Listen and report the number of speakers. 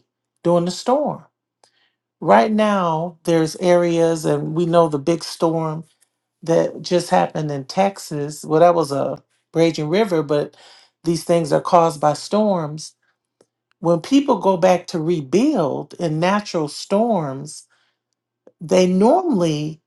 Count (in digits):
1